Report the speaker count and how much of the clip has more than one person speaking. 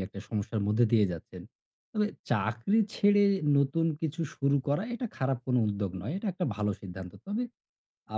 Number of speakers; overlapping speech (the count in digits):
1, no overlap